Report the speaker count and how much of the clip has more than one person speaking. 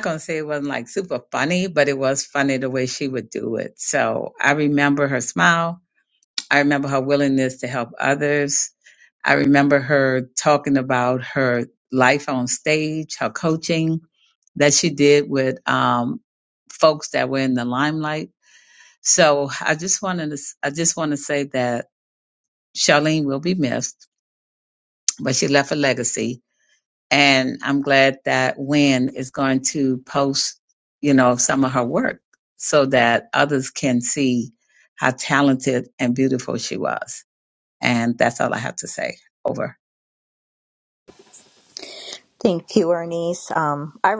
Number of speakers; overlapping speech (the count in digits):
2, no overlap